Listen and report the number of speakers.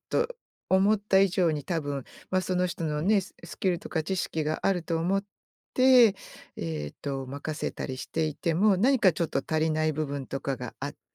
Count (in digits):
1